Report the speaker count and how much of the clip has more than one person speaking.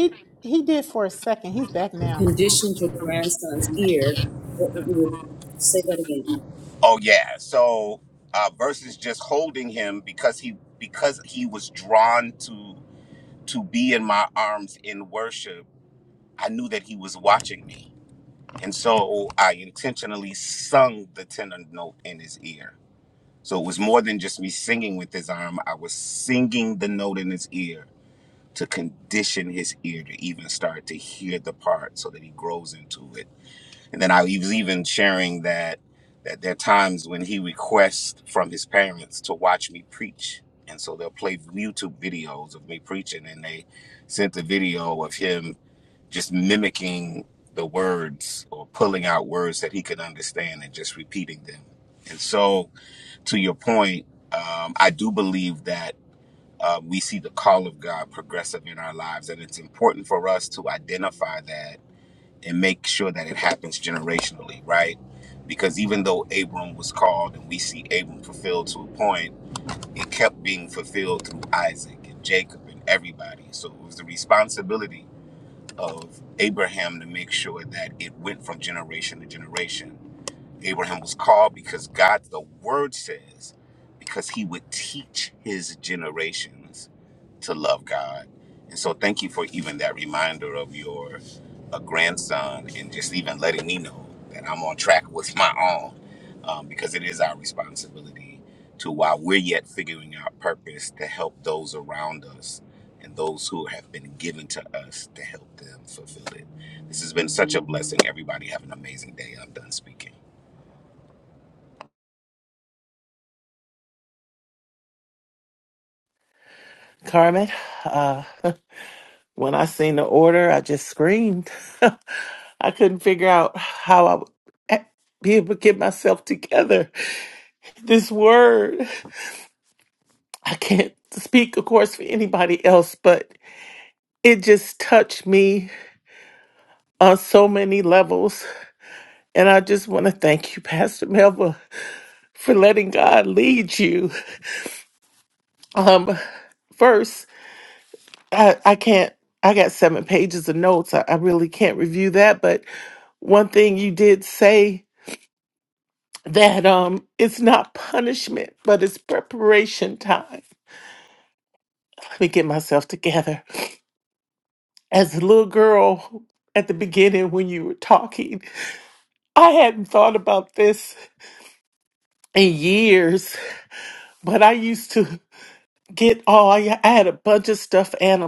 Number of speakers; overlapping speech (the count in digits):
4, under 1%